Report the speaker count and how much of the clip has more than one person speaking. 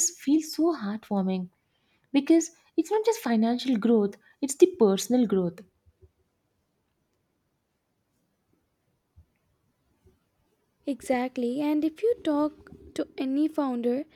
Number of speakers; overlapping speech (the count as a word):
two, no overlap